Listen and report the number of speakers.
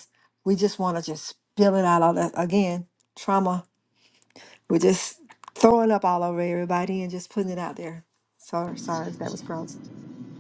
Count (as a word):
one